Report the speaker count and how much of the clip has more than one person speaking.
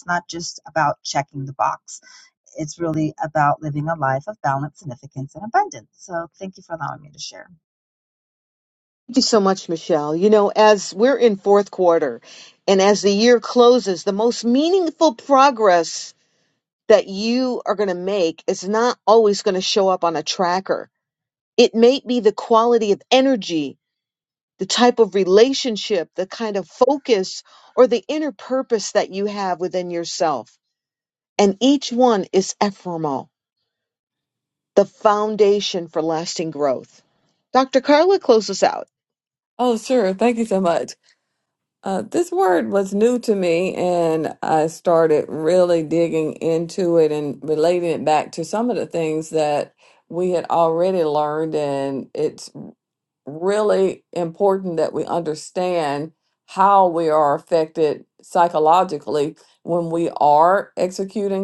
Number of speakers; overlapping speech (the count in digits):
3, no overlap